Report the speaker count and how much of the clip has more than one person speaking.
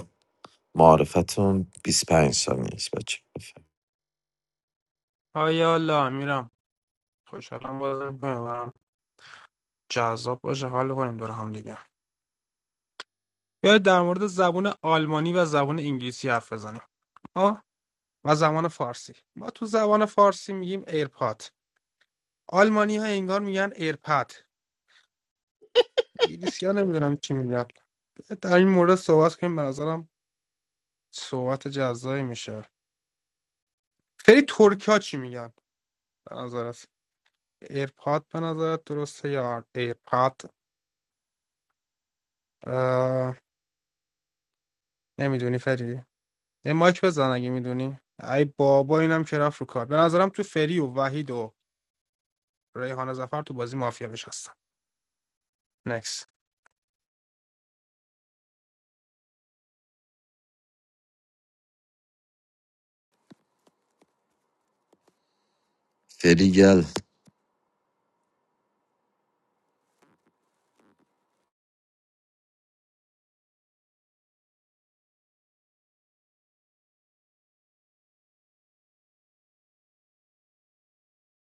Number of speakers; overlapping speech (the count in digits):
2, no overlap